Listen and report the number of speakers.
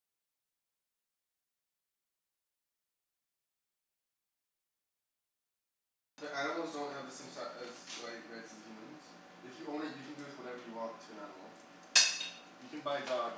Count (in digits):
1